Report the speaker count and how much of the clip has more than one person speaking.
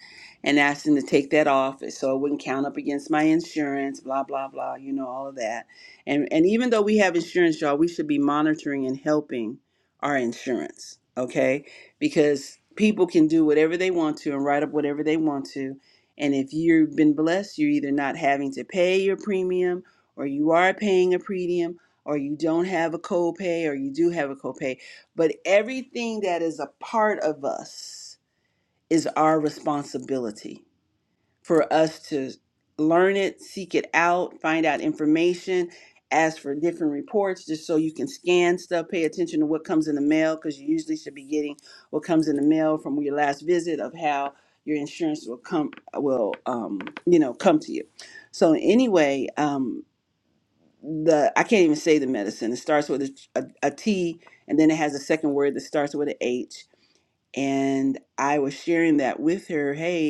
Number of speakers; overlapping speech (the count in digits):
1, no overlap